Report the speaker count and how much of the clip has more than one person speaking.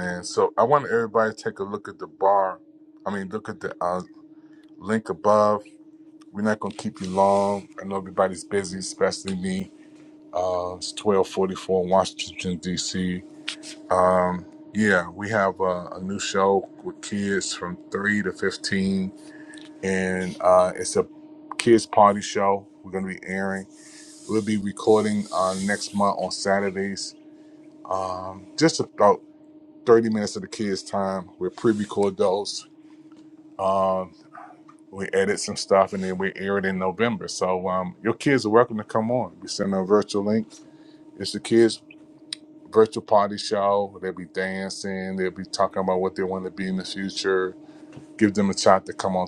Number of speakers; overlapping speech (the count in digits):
1, no overlap